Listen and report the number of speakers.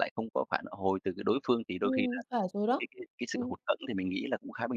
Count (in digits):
2